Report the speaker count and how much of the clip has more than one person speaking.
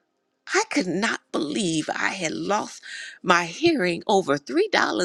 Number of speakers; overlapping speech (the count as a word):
one, no overlap